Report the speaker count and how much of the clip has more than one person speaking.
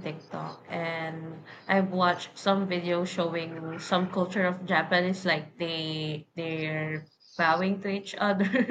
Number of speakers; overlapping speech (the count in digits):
1, no overlap